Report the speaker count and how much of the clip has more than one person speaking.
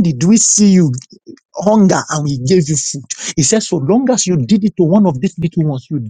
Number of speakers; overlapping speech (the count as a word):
one, no overlap